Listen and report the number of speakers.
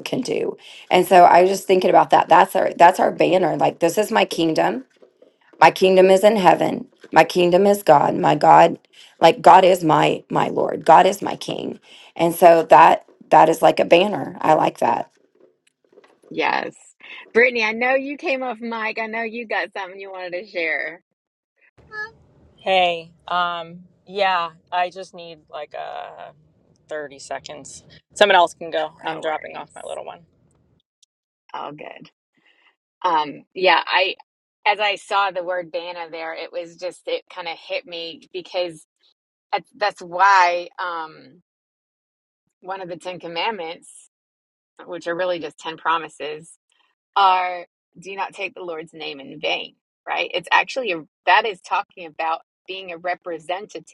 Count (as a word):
three